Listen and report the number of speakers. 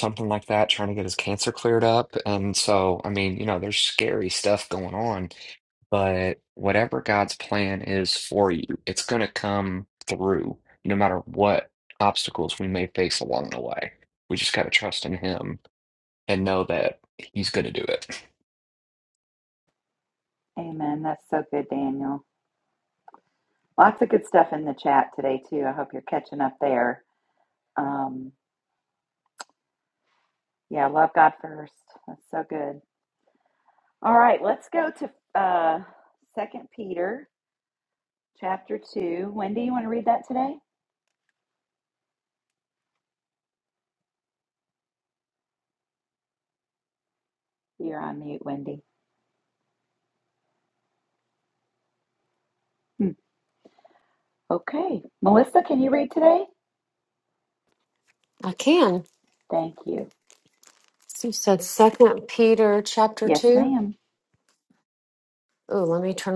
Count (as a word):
three